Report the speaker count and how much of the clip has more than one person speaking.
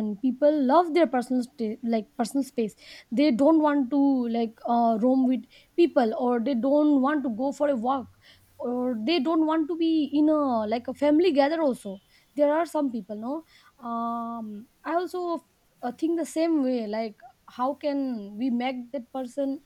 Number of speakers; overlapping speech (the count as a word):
one, no overlap